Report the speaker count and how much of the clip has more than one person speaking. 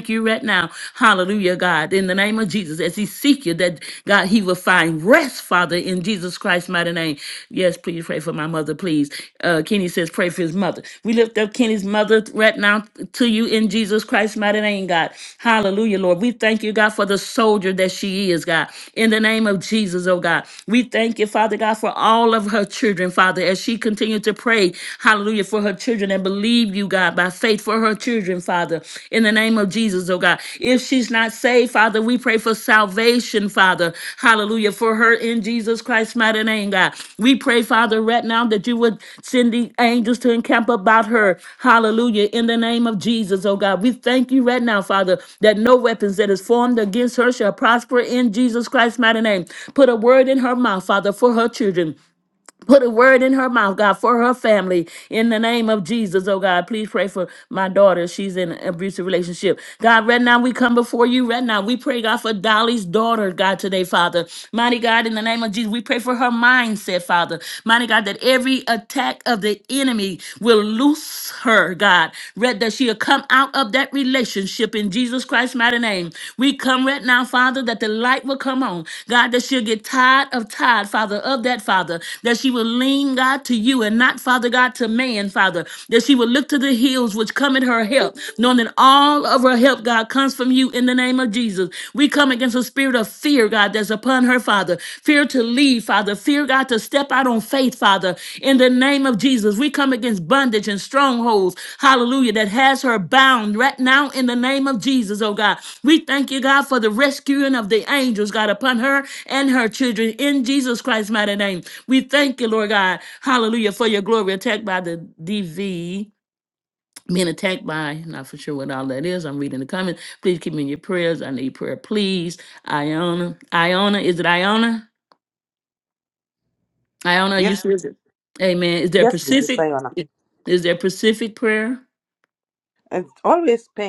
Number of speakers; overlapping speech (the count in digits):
2, about 1%